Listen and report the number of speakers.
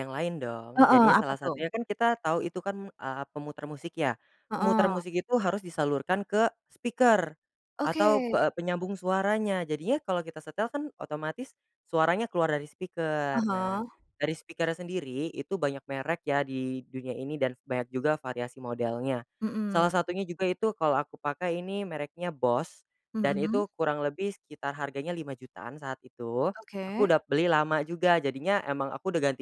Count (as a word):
two